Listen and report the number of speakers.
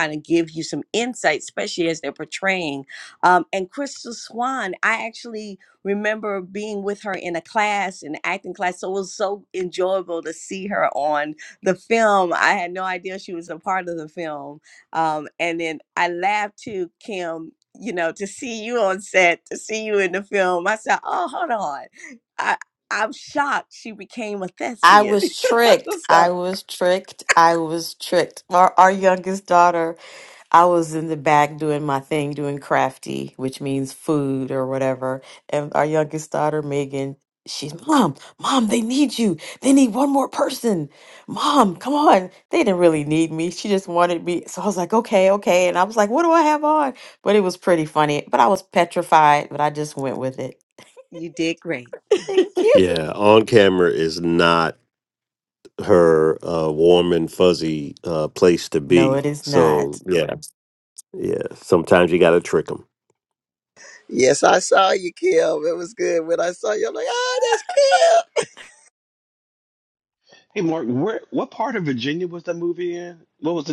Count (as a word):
five